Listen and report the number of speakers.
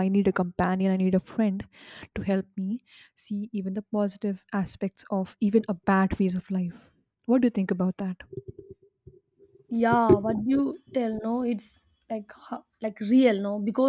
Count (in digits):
2